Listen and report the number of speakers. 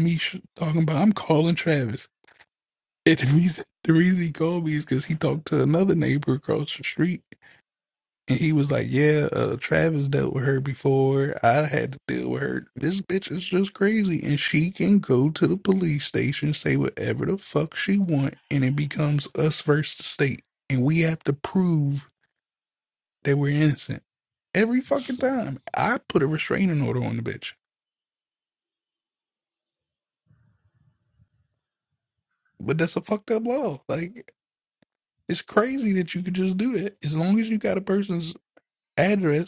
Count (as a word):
one